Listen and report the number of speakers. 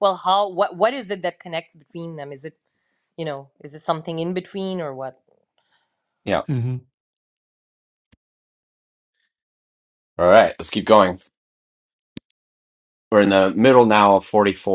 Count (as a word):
two